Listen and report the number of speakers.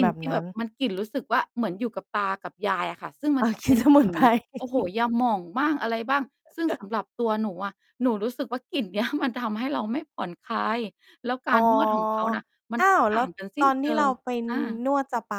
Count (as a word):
two